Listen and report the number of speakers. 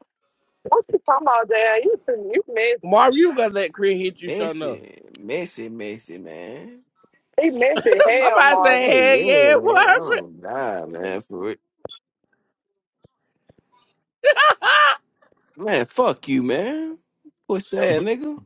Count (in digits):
3